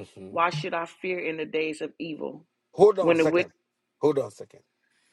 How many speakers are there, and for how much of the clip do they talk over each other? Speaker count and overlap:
two, about 9%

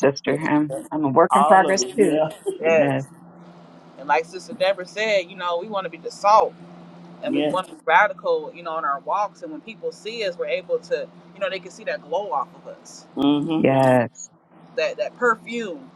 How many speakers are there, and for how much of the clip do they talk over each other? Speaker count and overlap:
three, about 13%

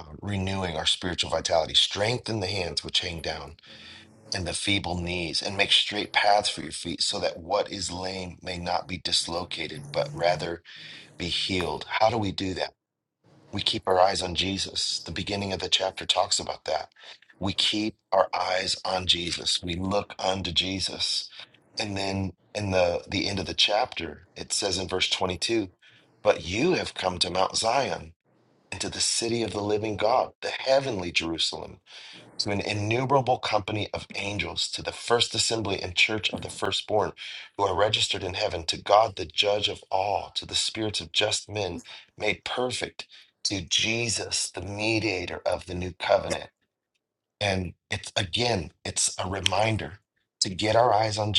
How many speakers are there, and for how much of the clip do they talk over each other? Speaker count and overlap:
one, no overlap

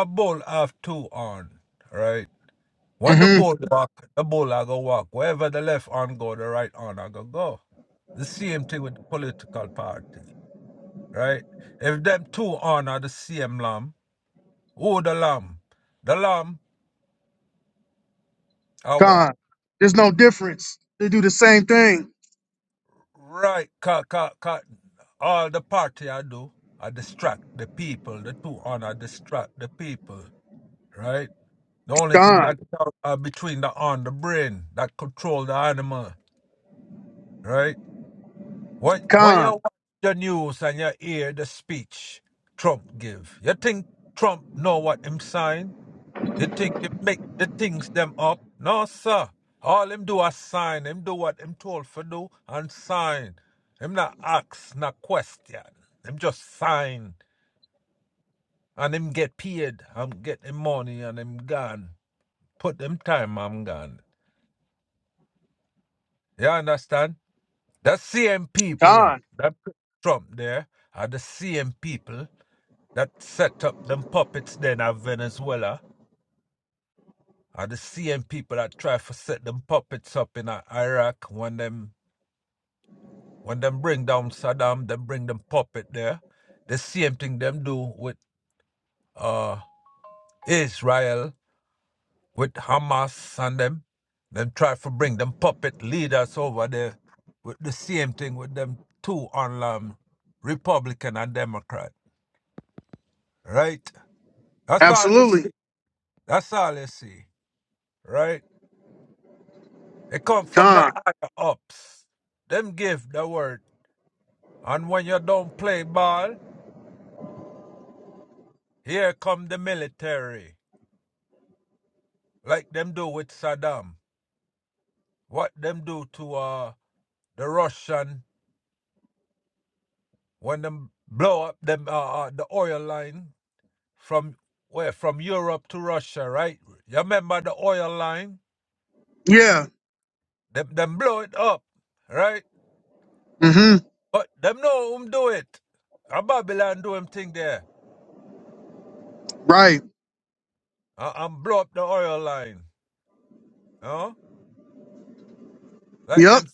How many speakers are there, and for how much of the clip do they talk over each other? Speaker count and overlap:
two, about 2%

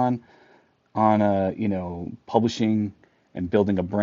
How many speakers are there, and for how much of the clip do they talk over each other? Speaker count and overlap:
one, no overlap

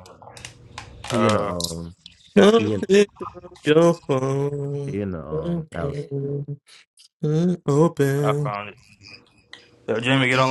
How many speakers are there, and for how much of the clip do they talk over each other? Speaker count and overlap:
three, about 16%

